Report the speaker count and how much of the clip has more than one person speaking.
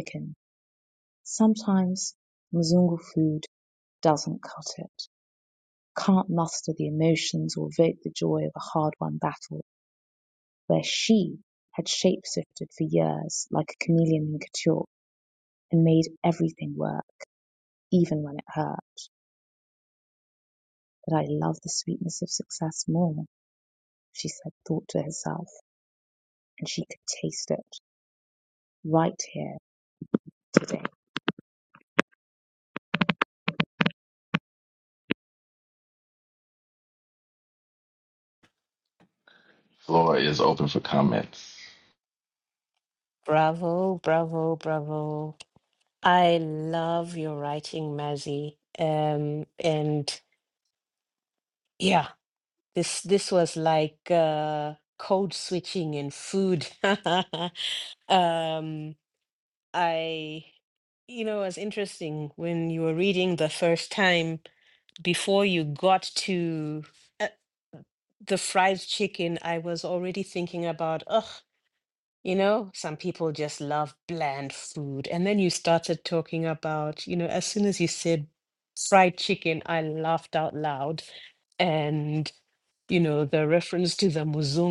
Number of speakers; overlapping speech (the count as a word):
three, no overlap